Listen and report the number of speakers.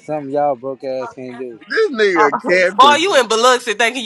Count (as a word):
three